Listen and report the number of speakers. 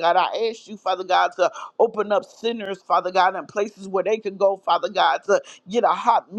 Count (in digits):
1